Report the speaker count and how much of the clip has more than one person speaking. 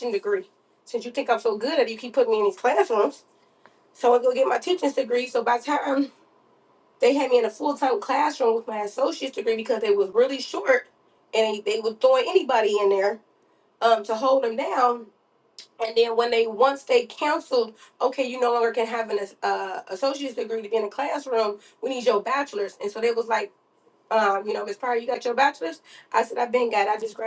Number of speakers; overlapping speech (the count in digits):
1, no overlap